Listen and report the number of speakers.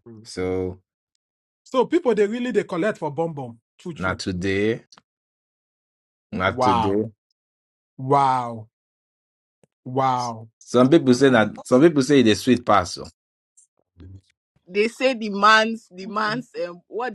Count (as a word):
three